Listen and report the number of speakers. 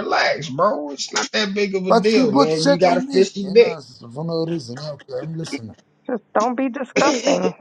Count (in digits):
3